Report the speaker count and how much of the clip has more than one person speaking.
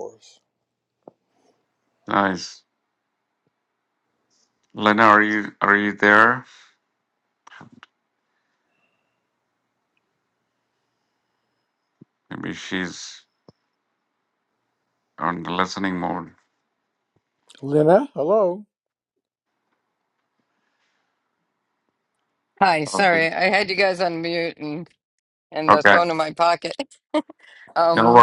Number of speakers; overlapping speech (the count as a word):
three, about 3%